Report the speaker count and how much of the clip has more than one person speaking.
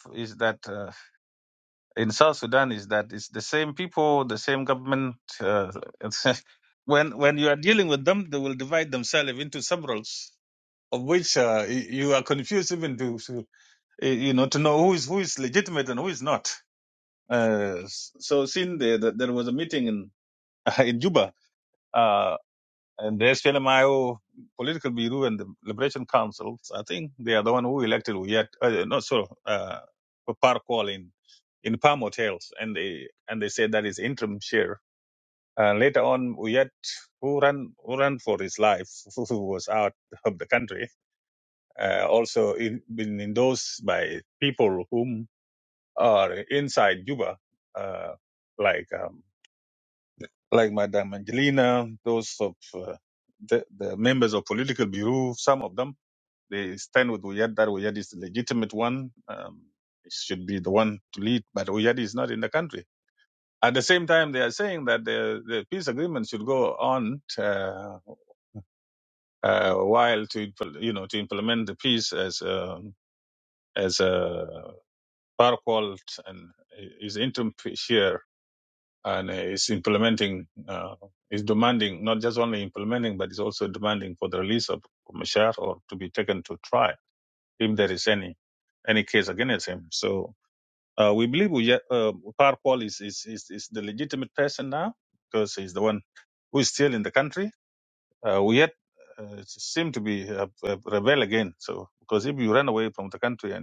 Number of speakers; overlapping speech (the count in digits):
1, no overlap